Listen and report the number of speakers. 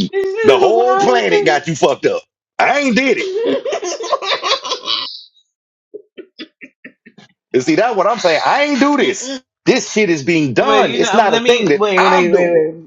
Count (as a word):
two